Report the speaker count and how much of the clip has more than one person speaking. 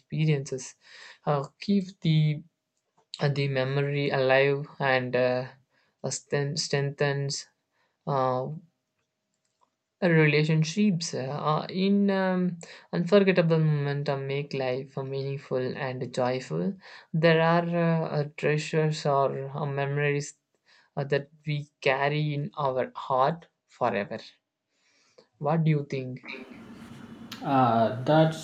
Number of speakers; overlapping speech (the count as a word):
two, no overlap